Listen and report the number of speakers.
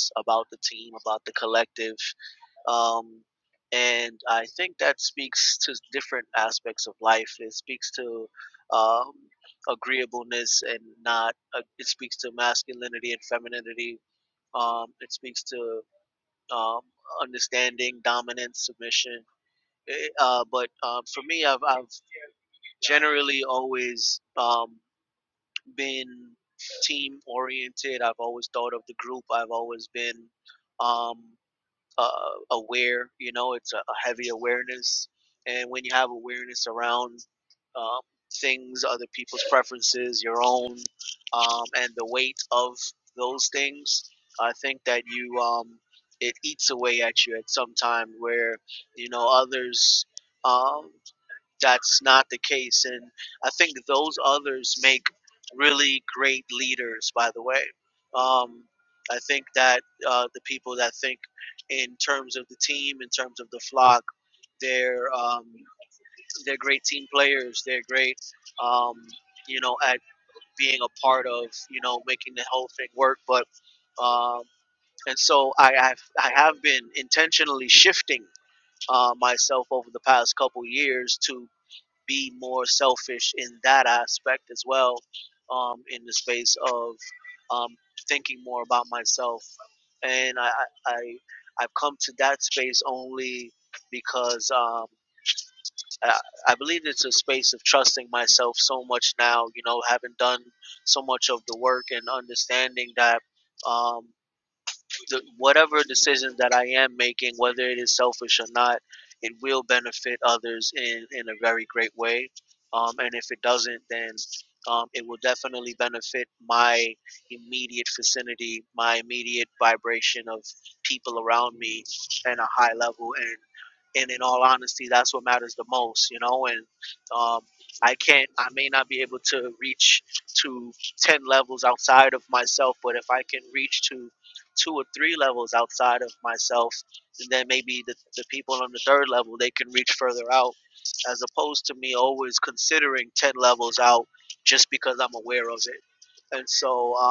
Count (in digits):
1